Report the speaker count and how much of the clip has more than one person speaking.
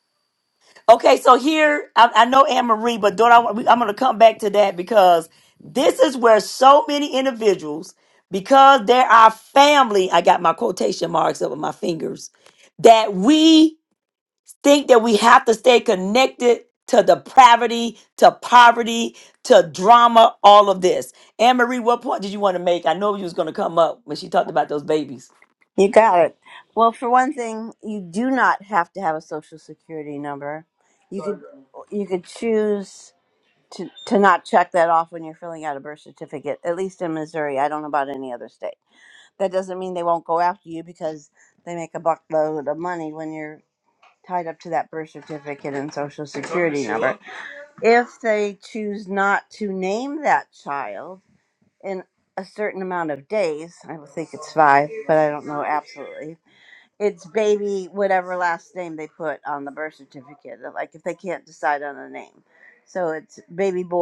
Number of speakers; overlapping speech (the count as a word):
two, no overlap